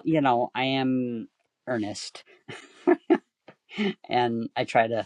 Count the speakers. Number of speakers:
1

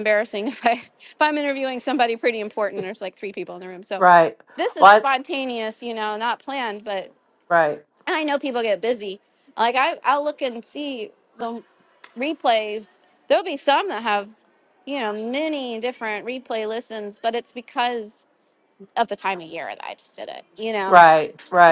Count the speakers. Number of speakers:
2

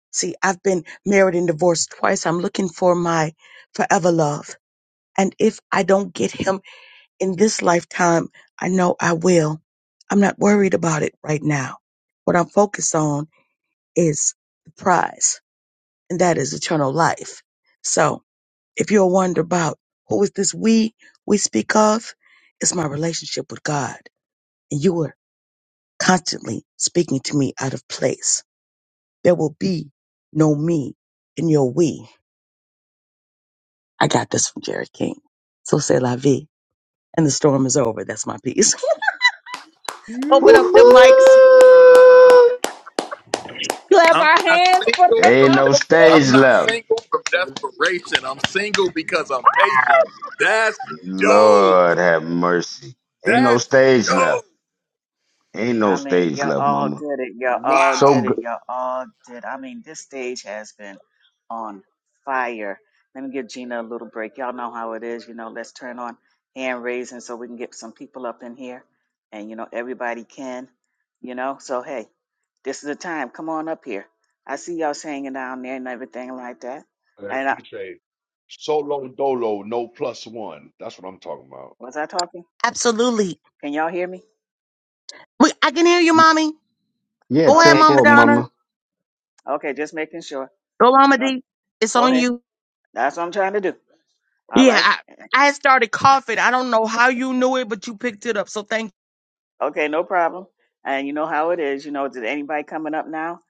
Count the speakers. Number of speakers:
5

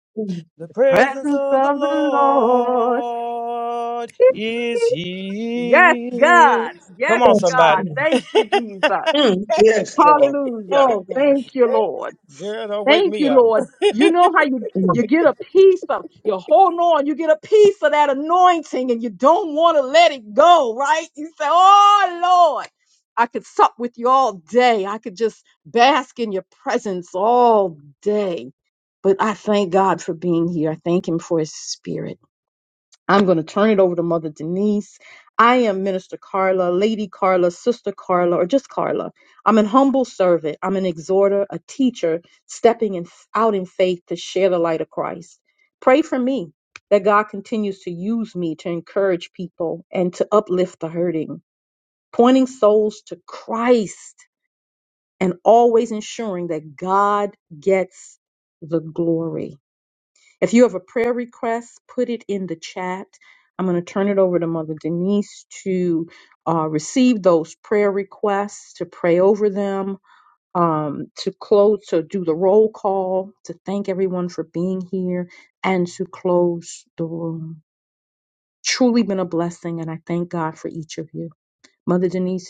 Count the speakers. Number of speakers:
3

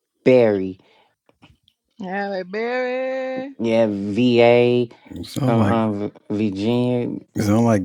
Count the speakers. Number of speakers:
3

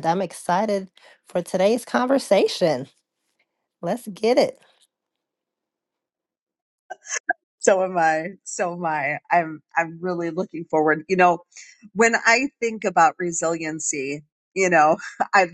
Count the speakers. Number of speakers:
2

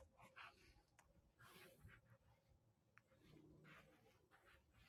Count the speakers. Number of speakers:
0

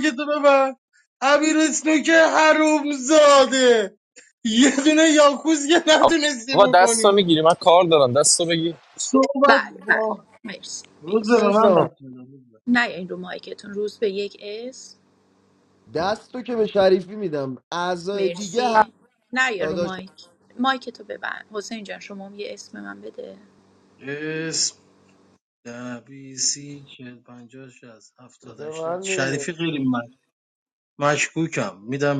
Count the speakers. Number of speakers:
4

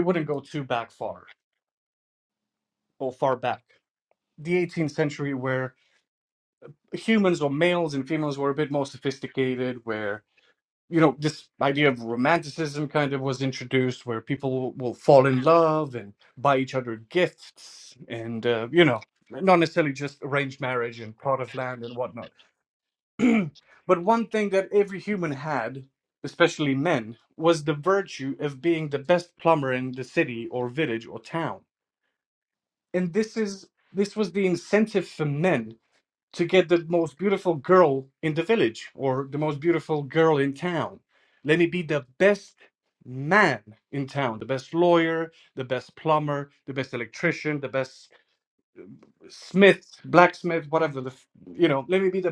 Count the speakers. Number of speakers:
1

